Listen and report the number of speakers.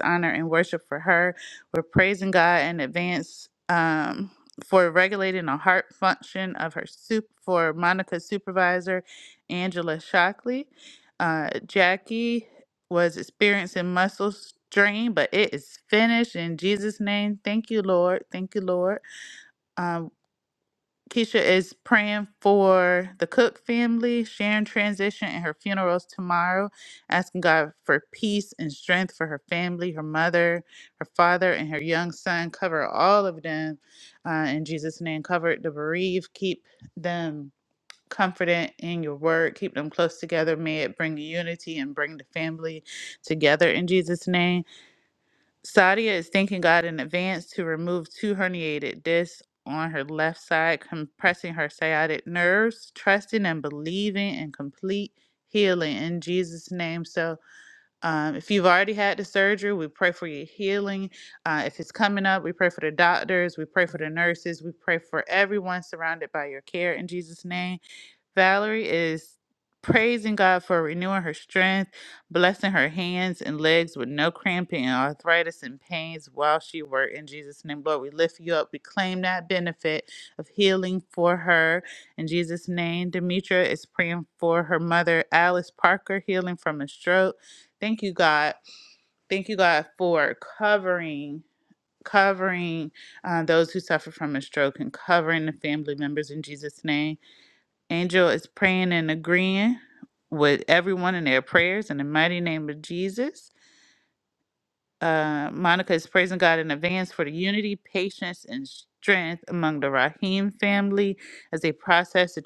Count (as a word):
one